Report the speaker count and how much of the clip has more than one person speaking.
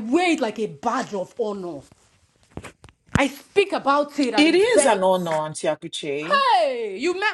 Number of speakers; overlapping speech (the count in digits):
2, about 9%